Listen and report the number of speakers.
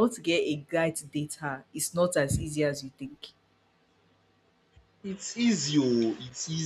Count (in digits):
2